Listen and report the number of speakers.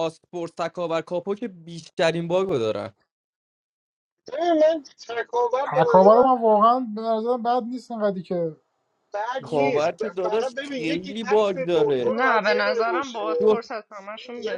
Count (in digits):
4